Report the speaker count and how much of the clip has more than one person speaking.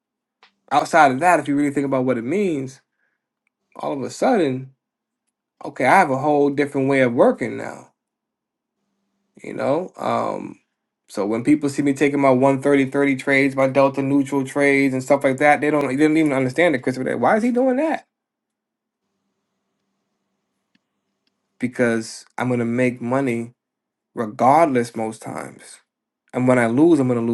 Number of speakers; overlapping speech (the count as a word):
one, no overlap